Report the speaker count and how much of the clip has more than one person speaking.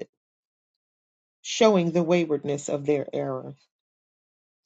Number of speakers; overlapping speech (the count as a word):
one, no overlap